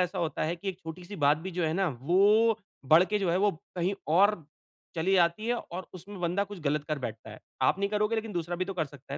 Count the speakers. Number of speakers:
1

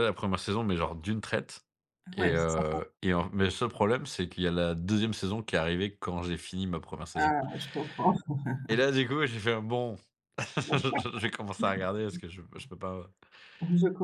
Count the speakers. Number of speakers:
2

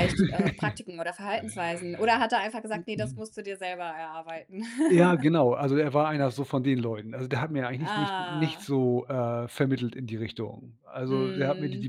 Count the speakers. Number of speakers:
2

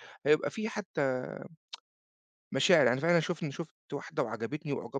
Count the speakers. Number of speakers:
1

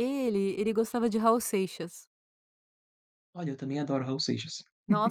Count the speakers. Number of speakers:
2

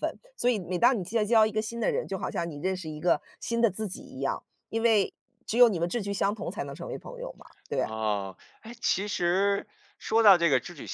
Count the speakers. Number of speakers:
2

